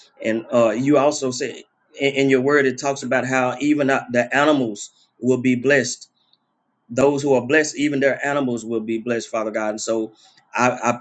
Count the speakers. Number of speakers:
one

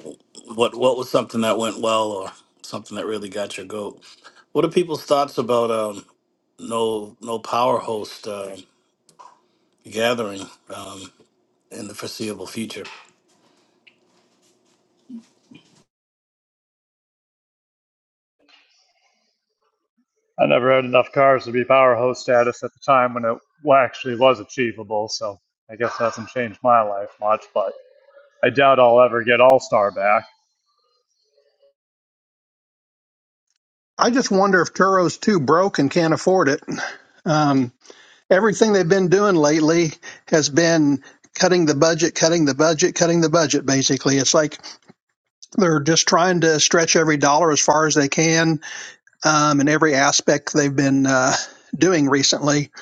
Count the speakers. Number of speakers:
three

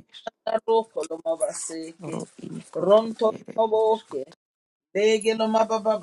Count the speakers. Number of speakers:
two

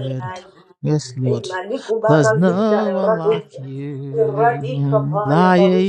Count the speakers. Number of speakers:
two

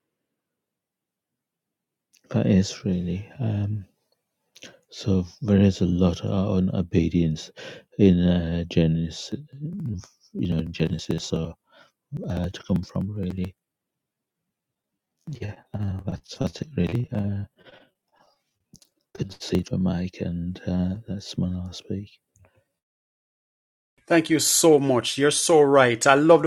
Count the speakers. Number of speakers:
two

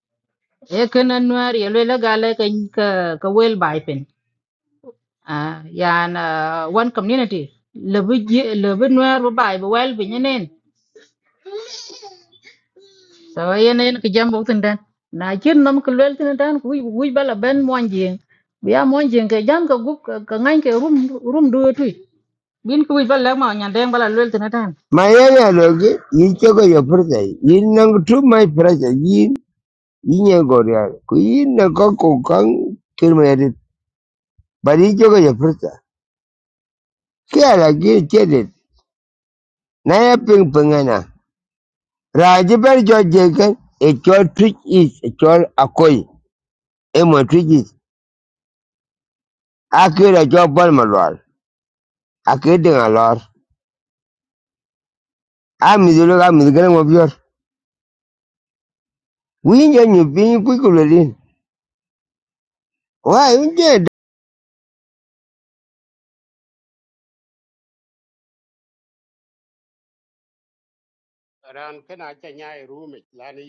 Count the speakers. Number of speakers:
three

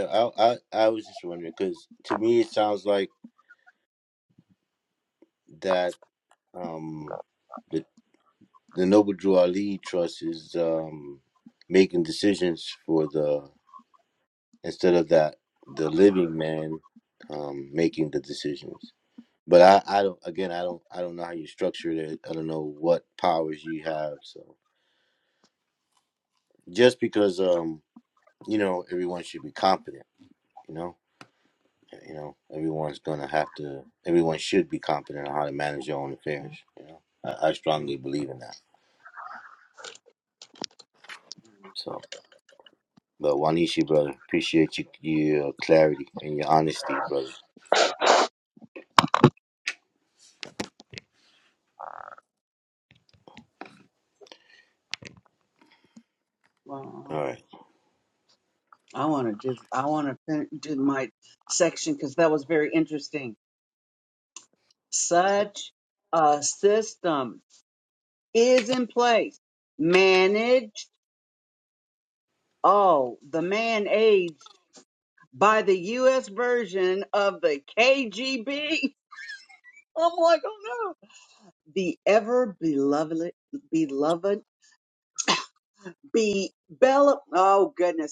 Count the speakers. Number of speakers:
two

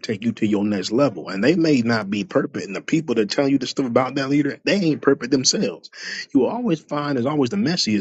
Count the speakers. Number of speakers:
one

